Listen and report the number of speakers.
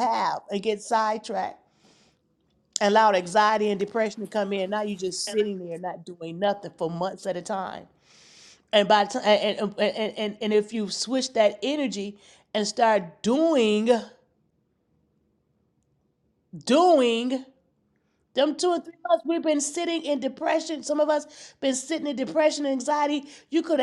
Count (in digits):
1